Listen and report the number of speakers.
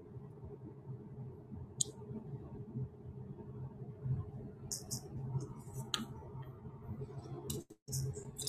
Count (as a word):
zero